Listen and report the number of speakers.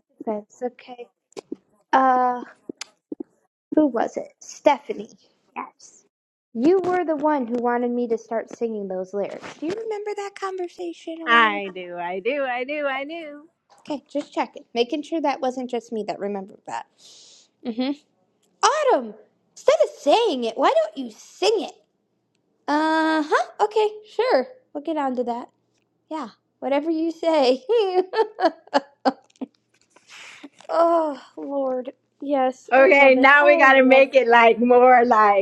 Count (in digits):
2